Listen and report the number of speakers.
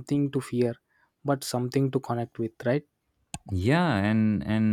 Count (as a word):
two